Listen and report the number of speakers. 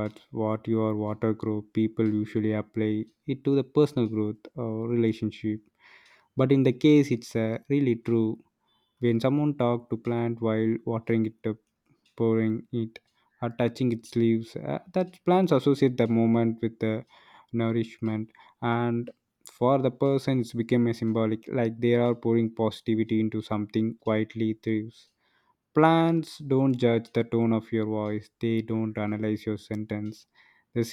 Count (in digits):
1